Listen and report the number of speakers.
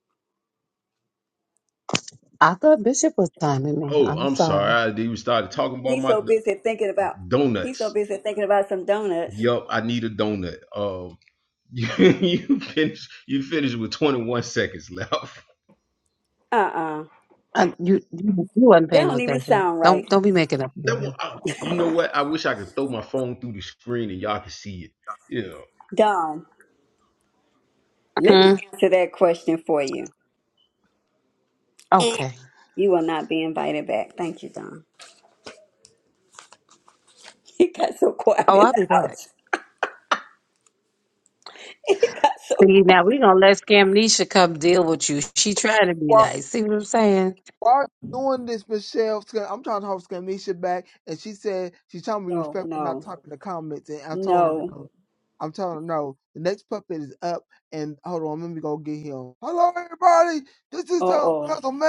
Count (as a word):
four